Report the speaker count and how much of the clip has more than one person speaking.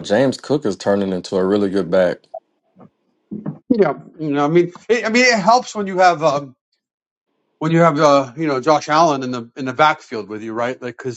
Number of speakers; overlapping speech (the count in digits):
2, no overlap